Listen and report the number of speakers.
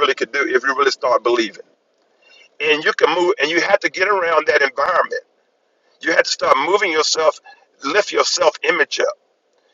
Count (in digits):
1